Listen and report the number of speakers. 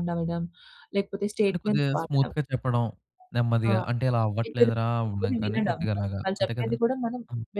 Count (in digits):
2